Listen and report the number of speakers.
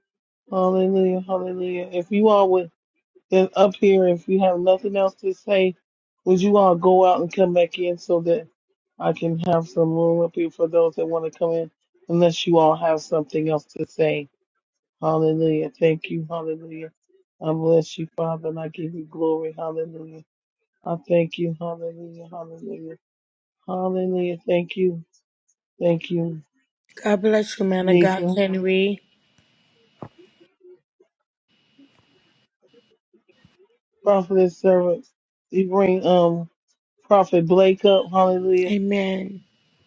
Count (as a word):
two